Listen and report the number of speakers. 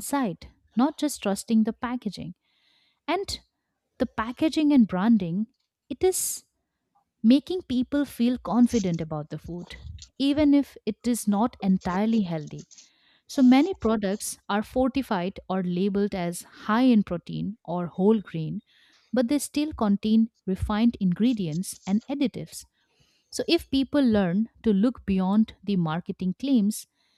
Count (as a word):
one